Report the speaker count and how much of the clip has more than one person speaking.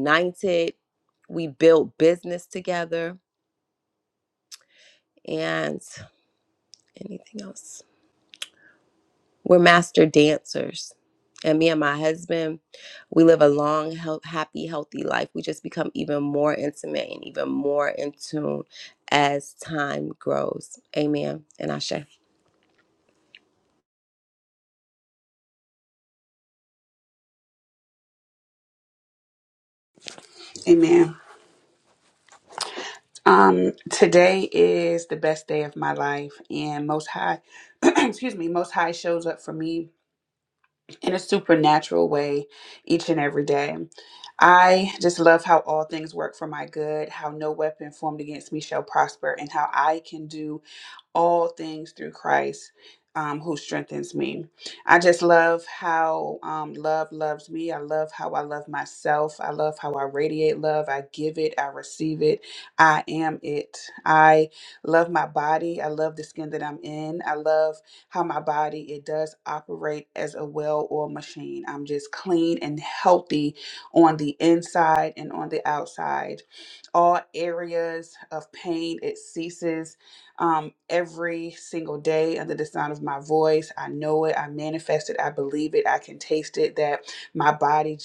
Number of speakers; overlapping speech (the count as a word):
two, no overlap